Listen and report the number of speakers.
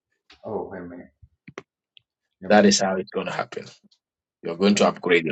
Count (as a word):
two